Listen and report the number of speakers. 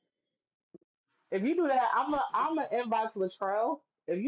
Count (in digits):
1